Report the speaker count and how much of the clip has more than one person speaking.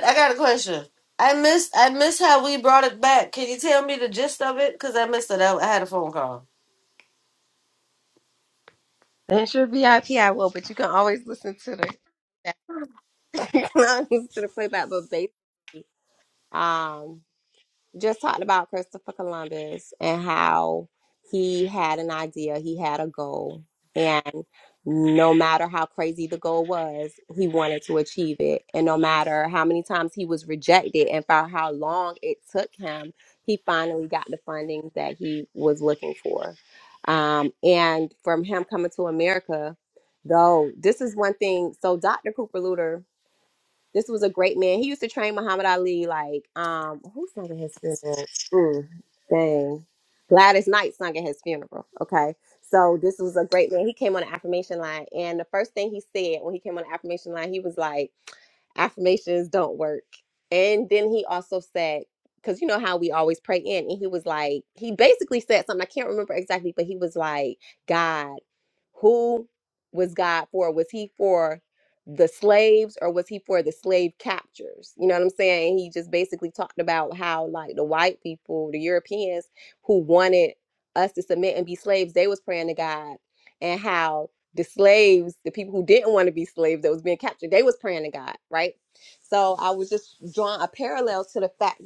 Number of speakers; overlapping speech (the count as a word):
two, no overlap